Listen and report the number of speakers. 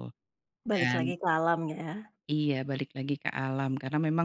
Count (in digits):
2